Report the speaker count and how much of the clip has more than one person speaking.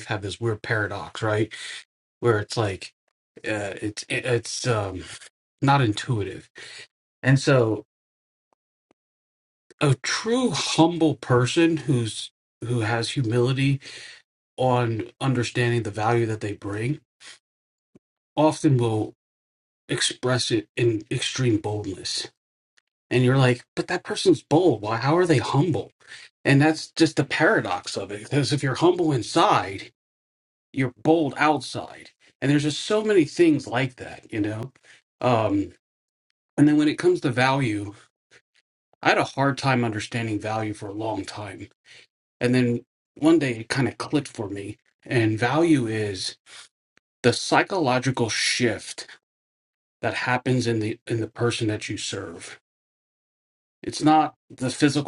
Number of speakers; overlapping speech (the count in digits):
1, no overlap